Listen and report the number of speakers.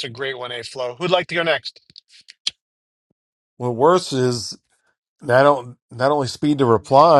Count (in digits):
2